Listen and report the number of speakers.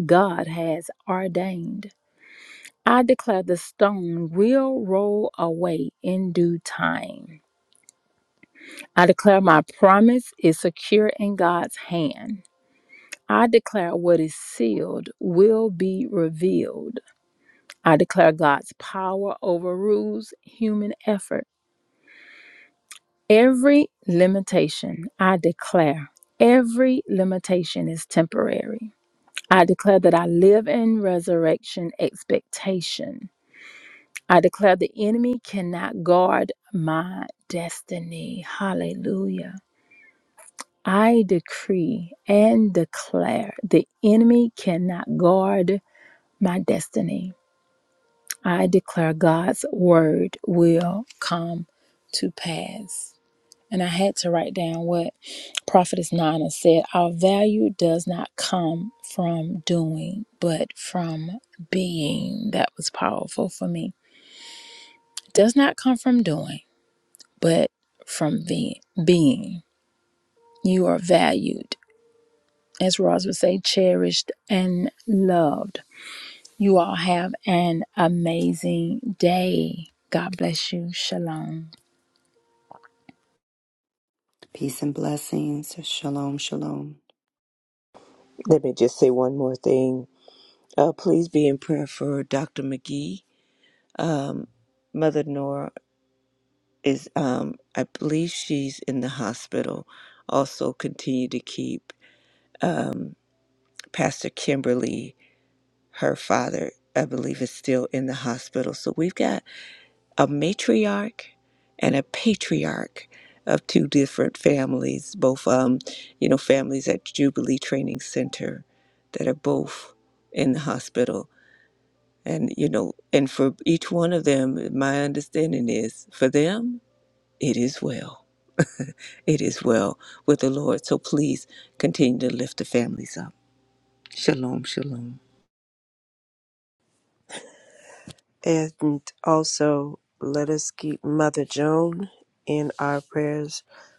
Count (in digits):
4